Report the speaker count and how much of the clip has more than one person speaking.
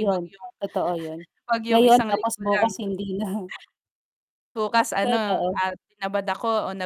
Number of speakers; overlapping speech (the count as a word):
two, about 22%